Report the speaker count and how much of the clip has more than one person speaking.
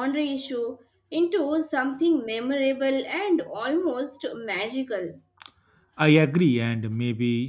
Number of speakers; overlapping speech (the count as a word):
two, no overlap